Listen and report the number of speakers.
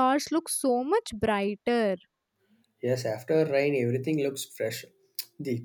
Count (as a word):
two